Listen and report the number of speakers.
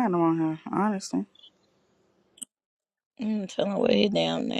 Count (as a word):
two